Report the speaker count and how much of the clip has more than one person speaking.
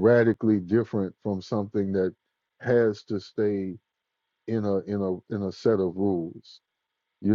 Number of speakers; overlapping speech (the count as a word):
one, no overlap